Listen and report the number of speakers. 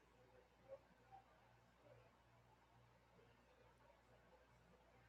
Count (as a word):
zero